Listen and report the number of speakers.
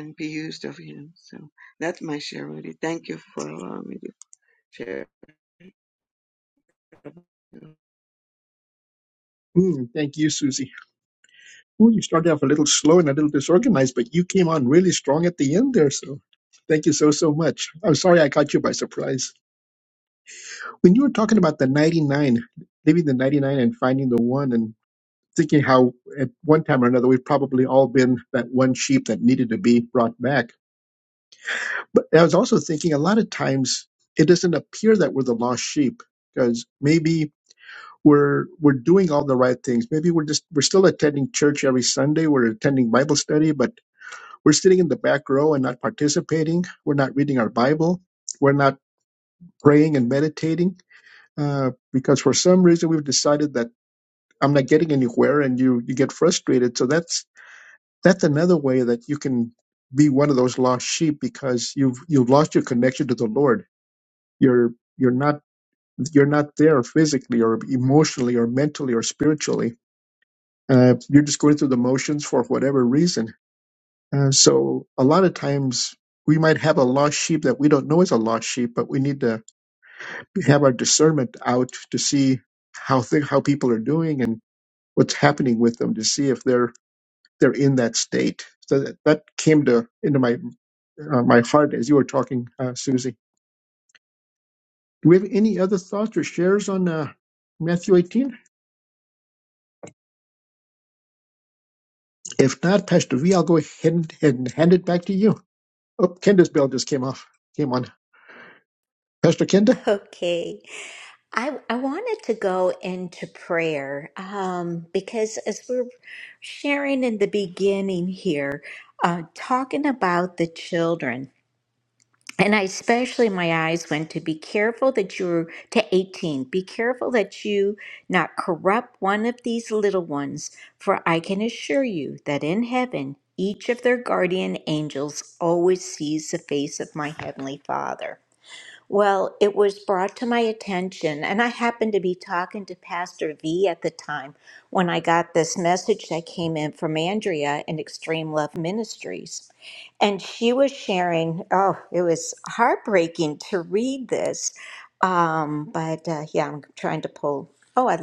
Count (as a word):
three